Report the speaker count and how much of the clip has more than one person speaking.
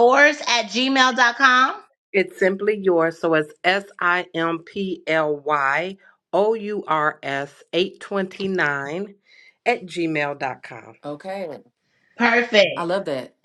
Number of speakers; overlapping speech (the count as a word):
three, about 1%